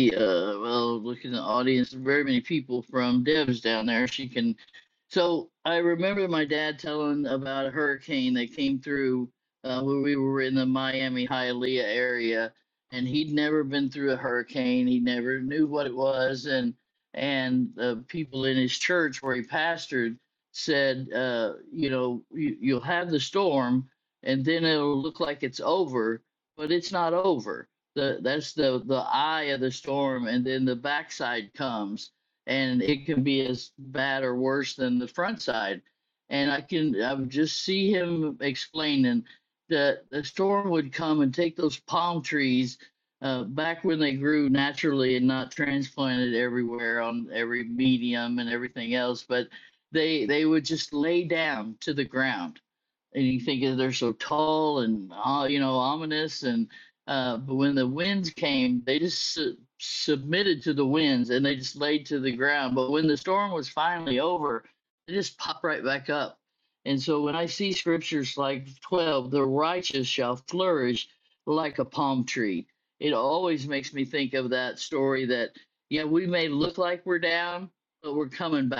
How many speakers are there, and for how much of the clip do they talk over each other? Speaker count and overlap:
one, no overlap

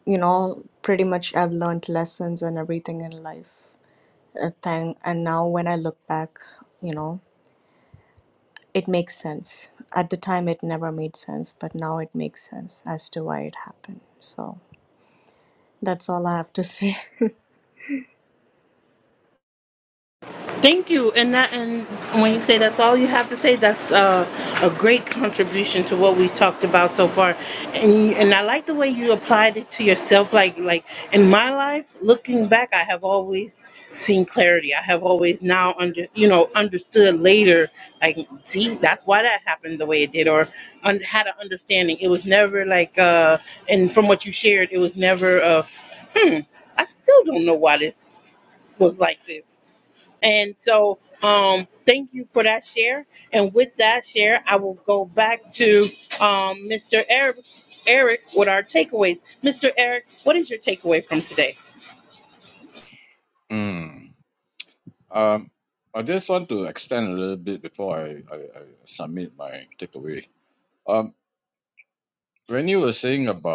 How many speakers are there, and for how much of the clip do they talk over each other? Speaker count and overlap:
three, no overlap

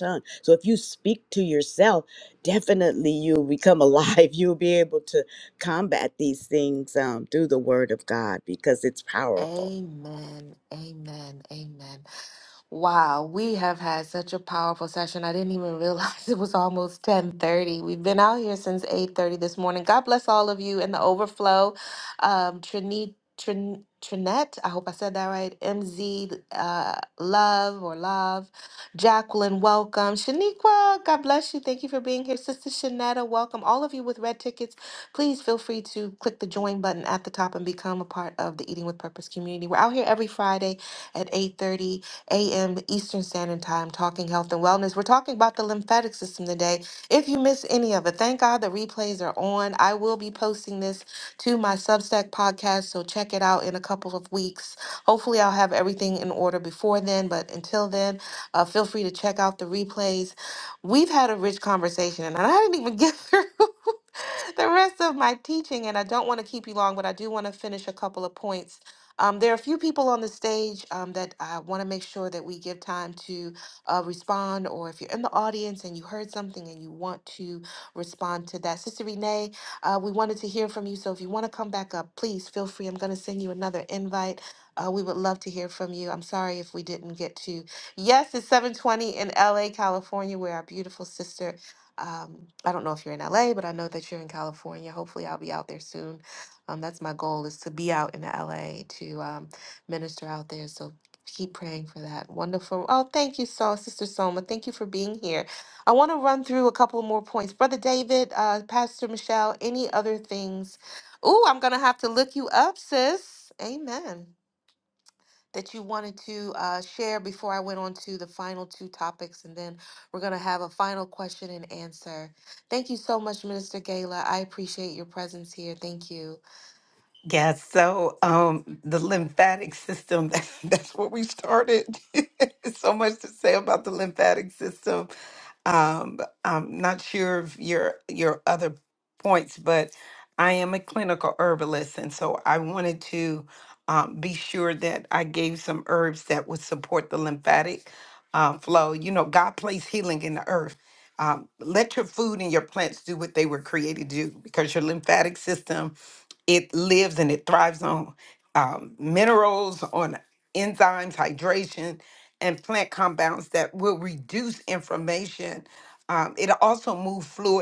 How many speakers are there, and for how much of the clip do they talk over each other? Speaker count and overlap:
three, under 1%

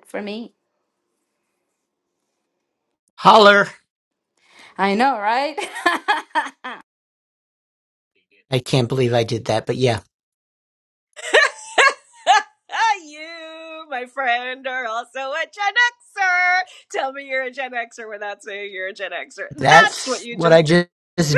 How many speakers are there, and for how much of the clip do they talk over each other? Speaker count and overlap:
three, about 5%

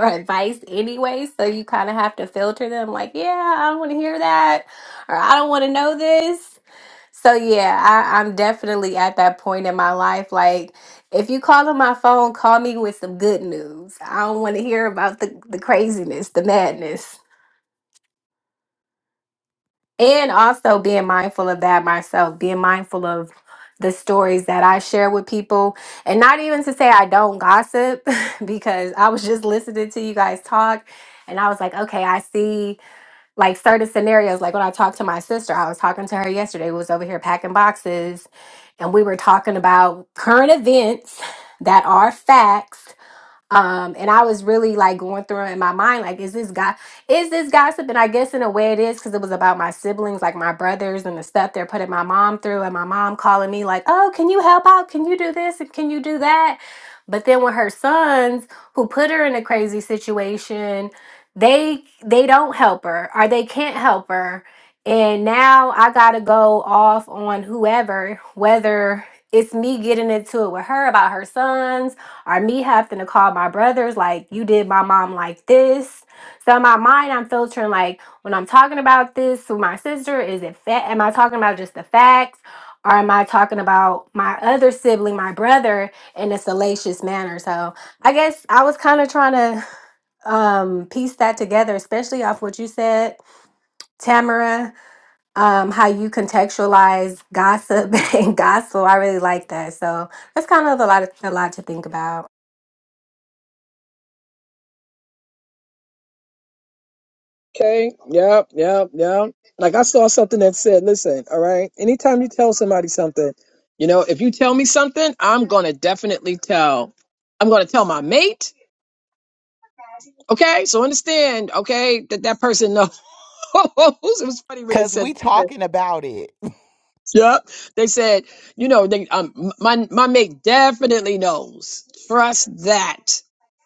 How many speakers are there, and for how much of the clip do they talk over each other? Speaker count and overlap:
three, about 1%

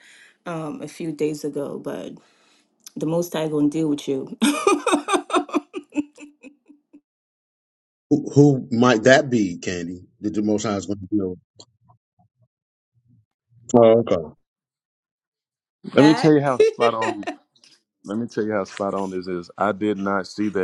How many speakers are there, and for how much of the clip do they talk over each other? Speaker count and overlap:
three, about 2%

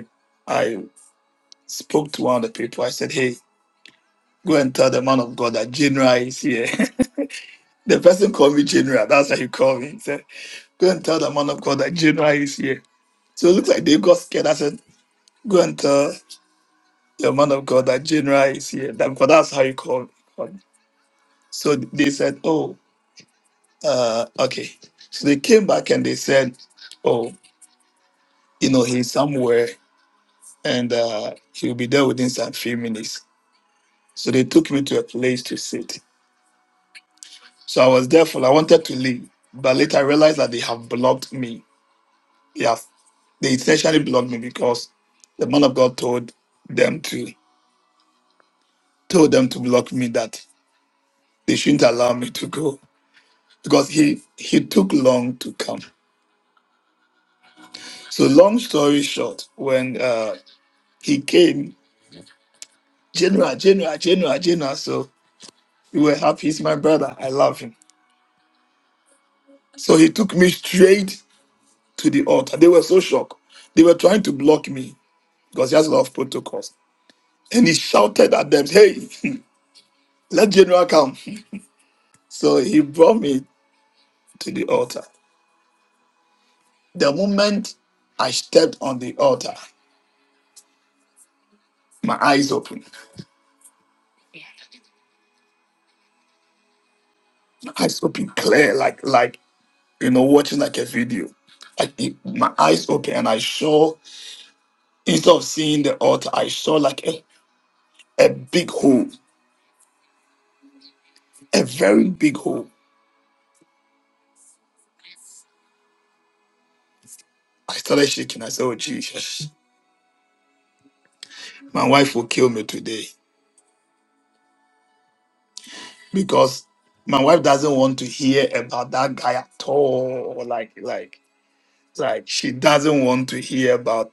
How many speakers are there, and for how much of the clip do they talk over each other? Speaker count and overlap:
one, no overlap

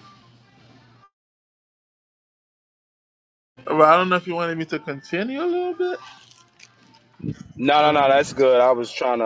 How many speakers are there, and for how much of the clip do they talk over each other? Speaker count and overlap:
two, about 4%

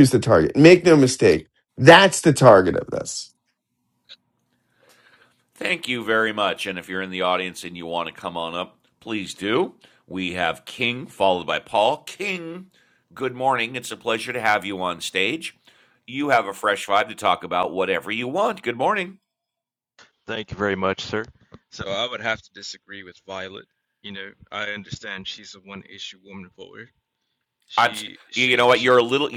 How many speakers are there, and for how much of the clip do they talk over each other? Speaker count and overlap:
three, about 2%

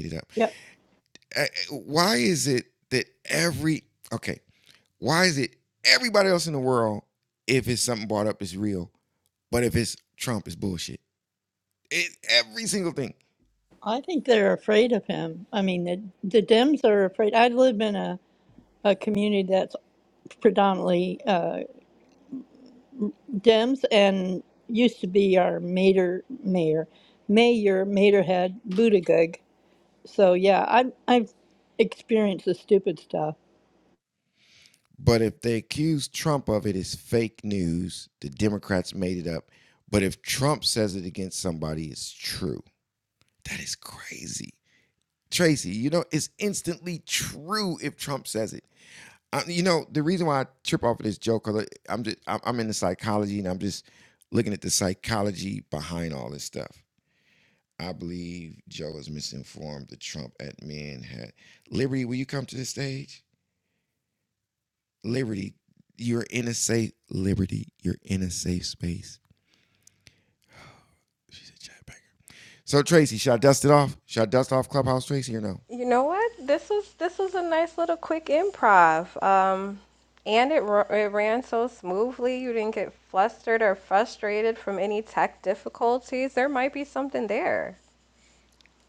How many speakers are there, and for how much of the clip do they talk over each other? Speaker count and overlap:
three, no overlap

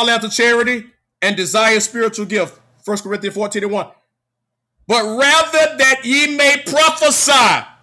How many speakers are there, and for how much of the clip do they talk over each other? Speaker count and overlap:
one, no overlap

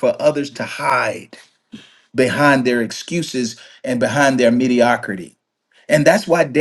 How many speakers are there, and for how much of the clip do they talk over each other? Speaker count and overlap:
one, no overlap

